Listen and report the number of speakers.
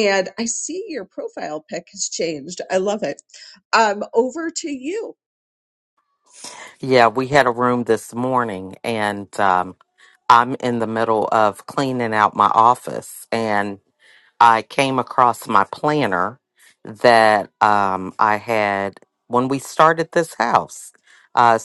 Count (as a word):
two